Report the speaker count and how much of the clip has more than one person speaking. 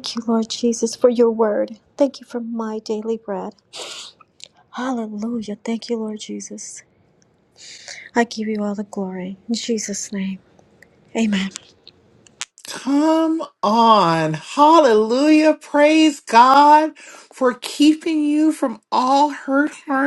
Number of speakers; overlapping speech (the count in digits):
2, no overlap